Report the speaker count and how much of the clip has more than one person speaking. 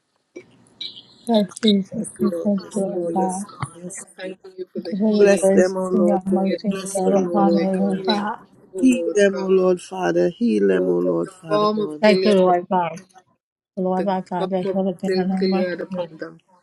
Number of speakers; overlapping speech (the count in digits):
3, about 60%